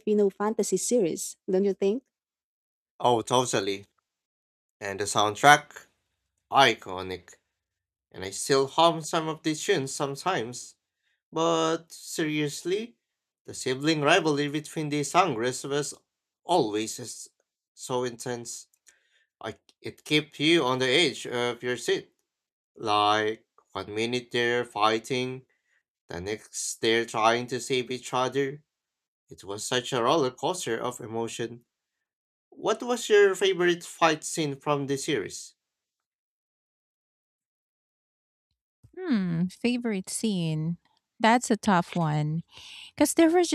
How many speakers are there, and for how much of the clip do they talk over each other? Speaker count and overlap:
three, no overlap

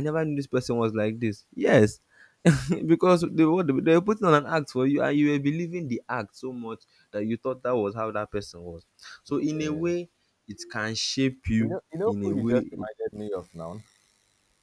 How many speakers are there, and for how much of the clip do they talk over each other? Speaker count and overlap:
two, about 11%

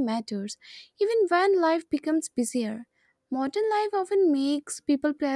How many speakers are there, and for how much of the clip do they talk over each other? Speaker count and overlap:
one, no overlap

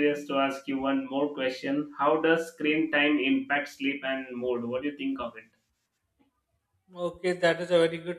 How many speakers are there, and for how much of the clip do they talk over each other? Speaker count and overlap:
two, no overlap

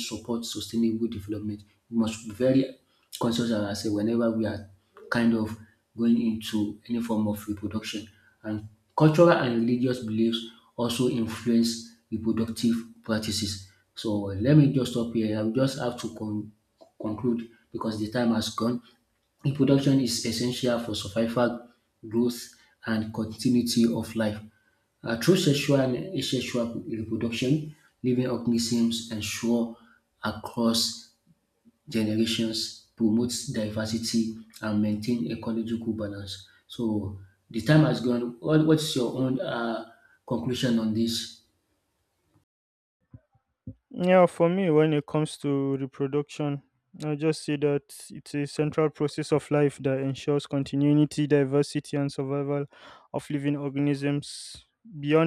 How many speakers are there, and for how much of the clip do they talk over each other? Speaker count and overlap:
two, no overlap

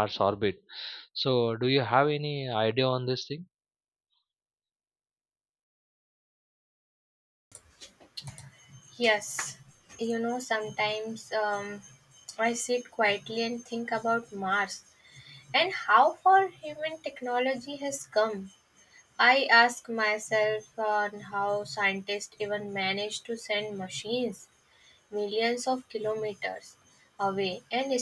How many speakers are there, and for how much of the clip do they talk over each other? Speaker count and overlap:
two, no overlap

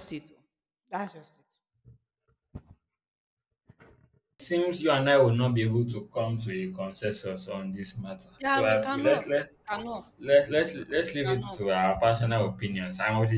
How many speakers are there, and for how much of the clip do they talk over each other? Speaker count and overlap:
two, about 8%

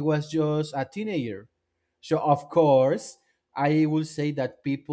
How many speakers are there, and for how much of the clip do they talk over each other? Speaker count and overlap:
one, no overlap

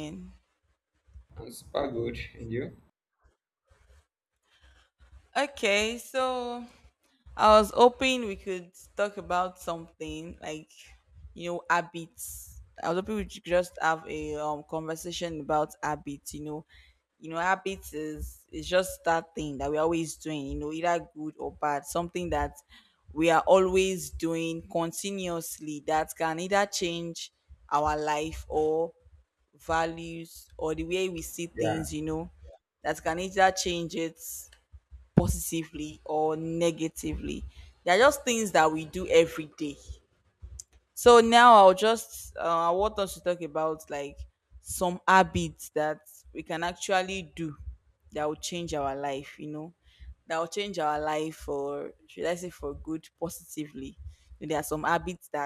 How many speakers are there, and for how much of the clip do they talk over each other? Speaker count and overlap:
two, about 1%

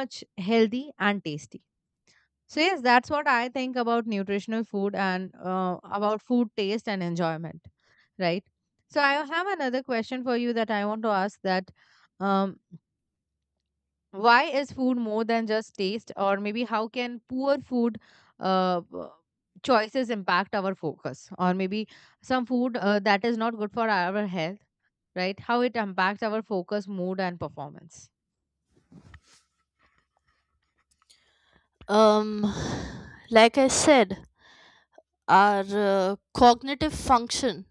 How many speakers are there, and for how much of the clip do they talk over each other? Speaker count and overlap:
two, no overlap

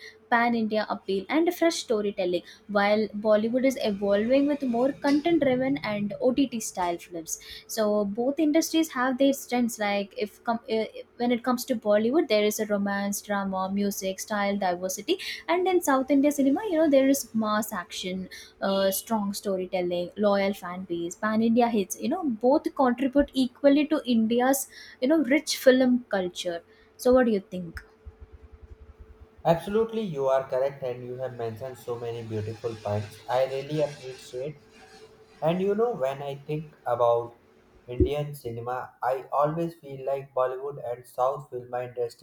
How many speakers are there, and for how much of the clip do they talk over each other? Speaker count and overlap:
two, no overlap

